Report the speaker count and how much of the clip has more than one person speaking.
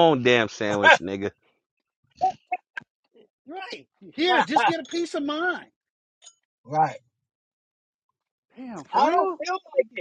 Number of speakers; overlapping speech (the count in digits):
3, about 5%